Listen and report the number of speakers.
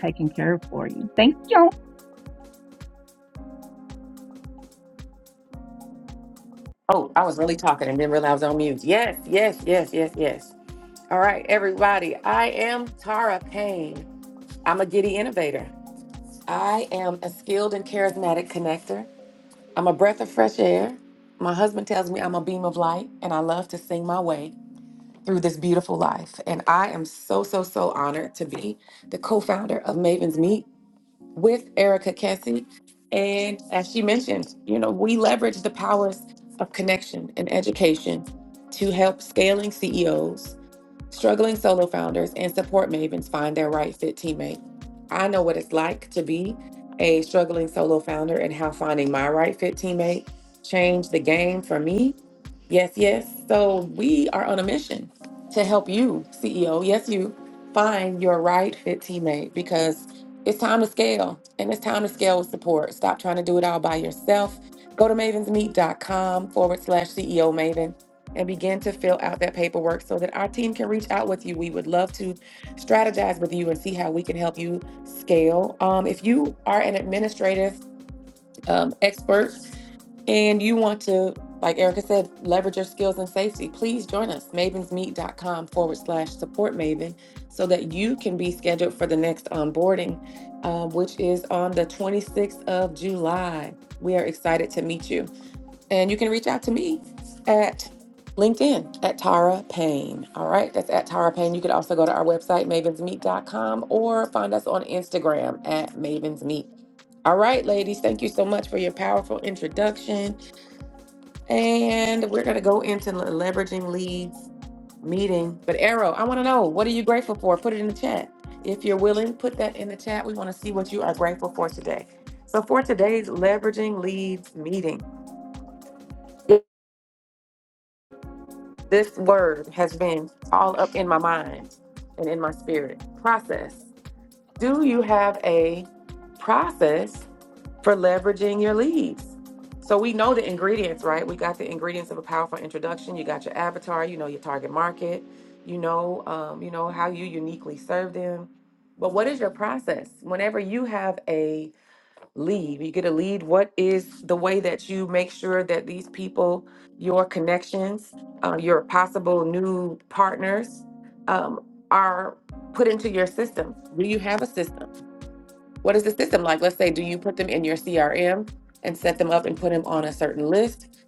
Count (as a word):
two